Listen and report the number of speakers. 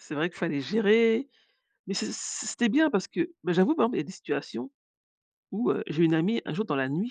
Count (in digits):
1